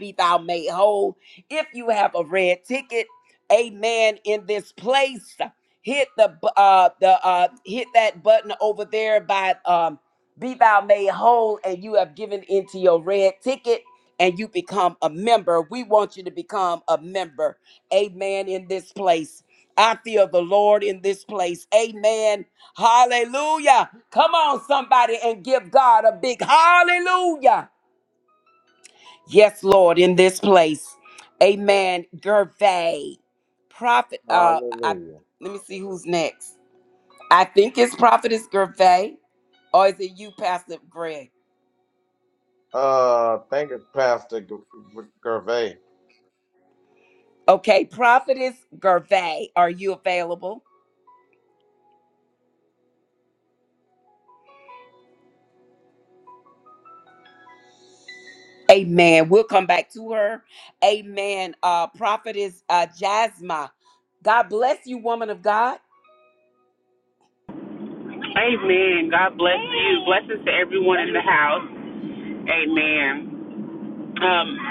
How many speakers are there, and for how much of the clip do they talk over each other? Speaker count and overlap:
3, about 1%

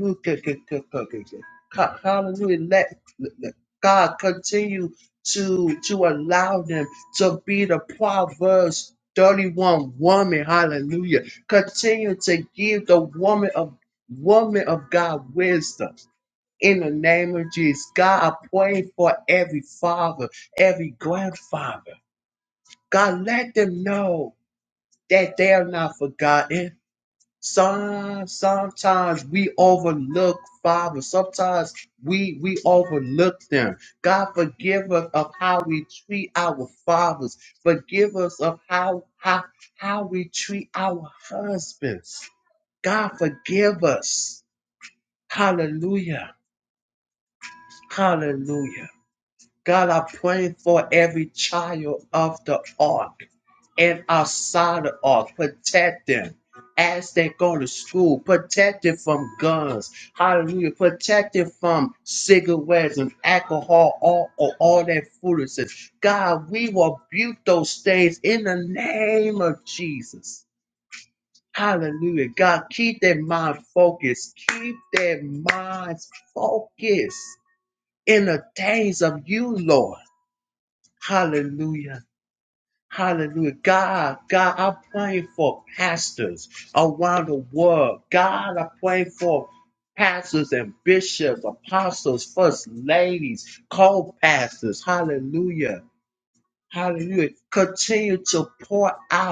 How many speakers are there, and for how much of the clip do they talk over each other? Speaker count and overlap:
1, no overlap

